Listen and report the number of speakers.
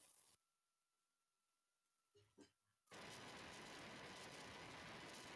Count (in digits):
0